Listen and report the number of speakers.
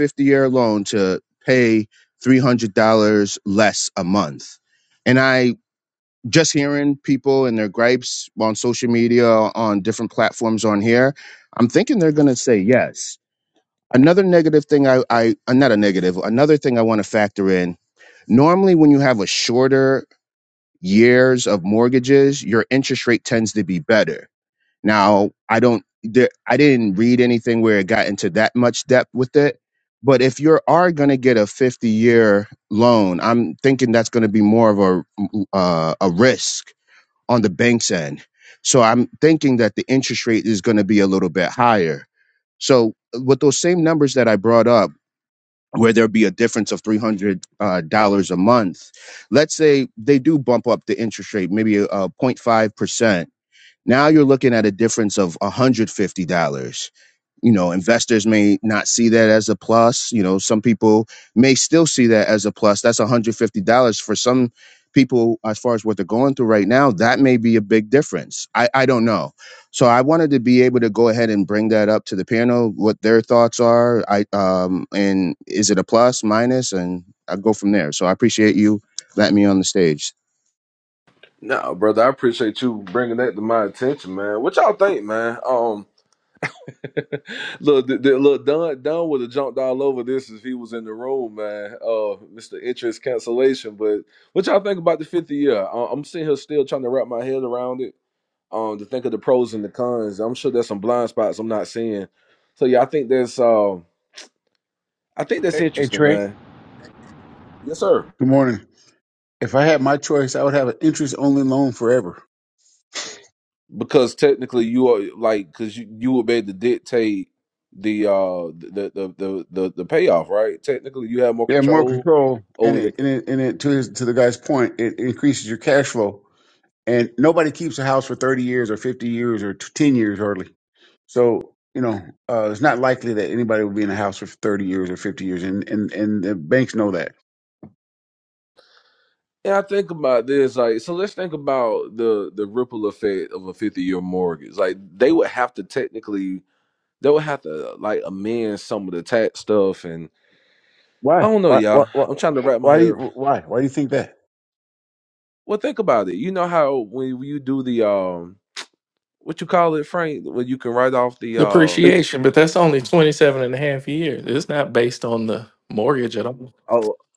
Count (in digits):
4